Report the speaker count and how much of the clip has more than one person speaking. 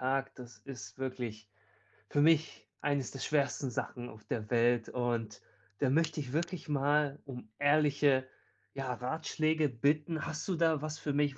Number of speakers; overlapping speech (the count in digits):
1, no overlap